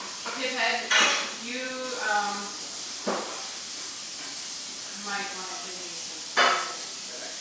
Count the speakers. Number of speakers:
1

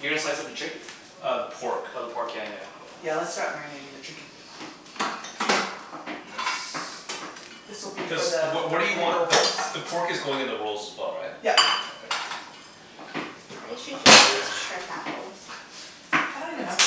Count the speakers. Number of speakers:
4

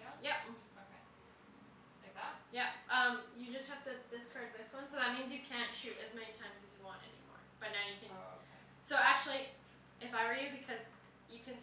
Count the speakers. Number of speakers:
2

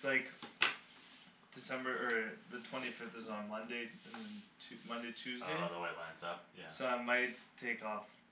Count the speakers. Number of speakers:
2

